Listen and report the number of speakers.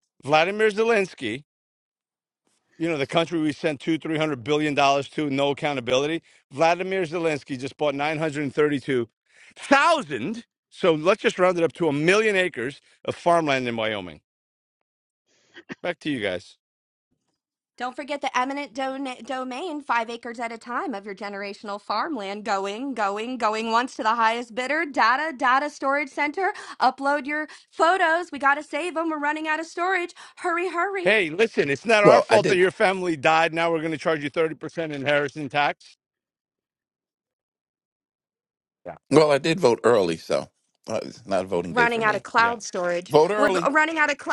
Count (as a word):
three